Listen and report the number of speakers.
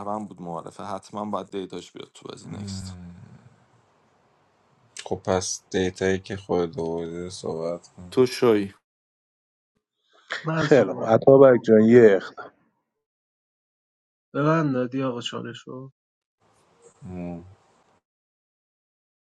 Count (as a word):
four